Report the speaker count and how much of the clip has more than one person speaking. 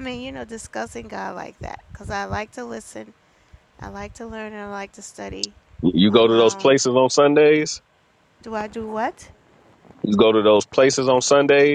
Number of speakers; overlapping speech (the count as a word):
two, about 6%